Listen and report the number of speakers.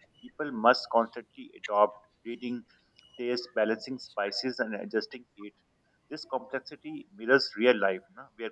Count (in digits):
1